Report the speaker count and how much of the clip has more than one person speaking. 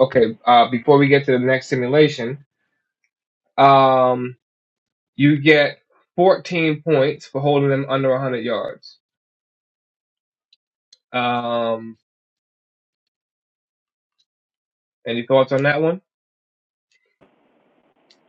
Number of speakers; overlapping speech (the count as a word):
one, no overlap